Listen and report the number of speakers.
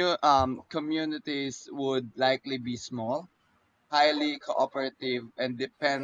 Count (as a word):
one